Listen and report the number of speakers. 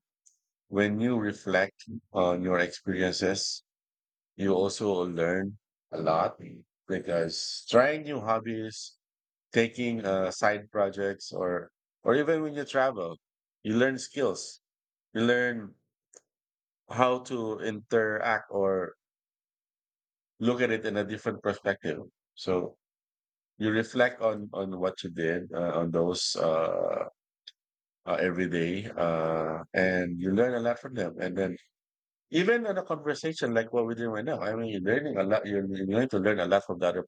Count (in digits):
1